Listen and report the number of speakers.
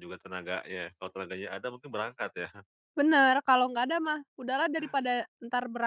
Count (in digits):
2